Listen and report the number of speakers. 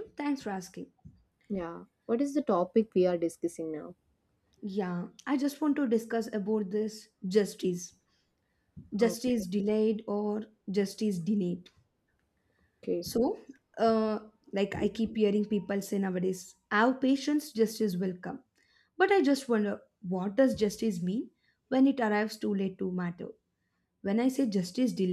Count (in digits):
2